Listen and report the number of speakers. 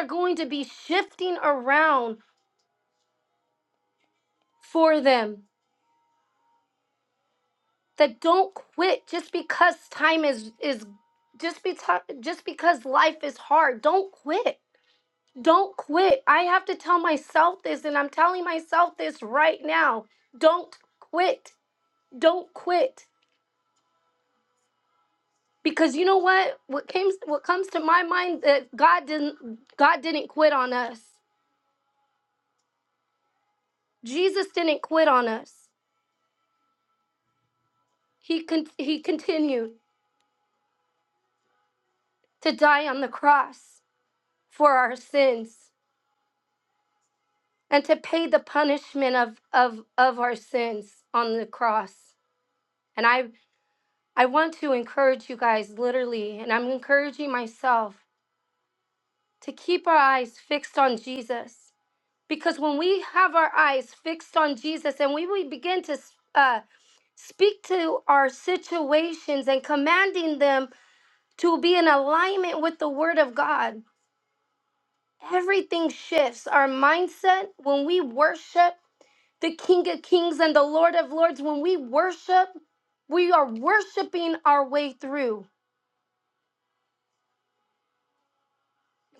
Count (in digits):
1